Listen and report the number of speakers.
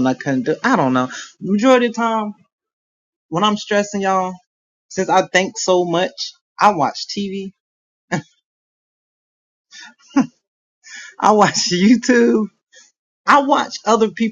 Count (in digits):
1